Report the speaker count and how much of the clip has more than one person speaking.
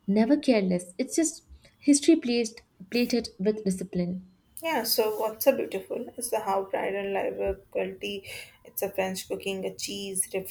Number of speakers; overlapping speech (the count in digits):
2, no overlap